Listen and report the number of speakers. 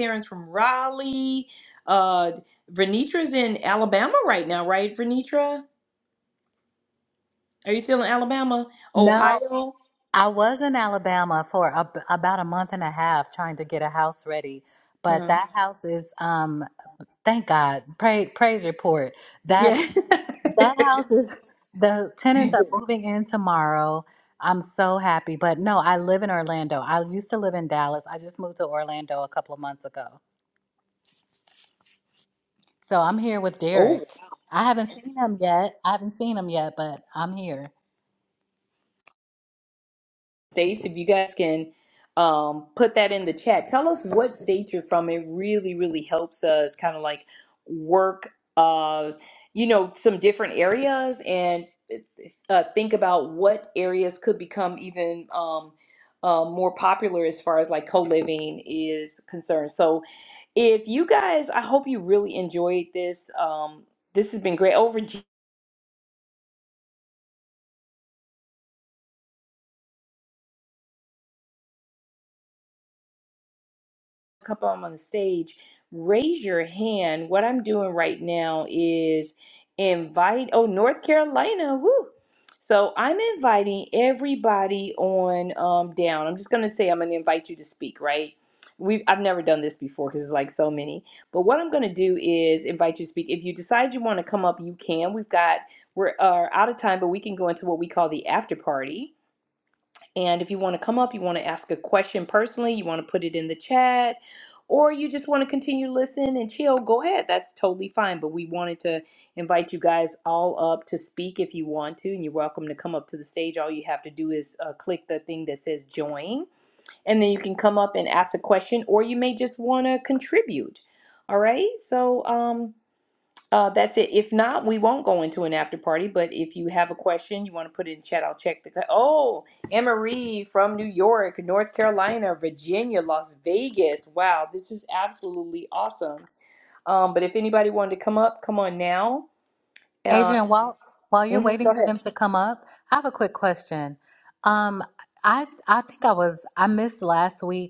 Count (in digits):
2